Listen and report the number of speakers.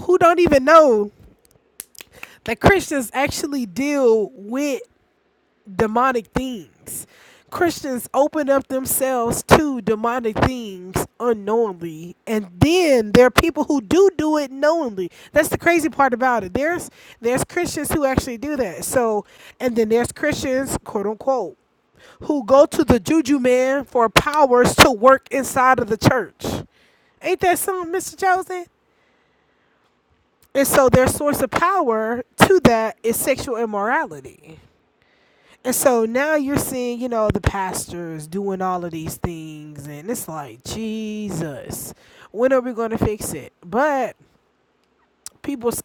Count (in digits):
1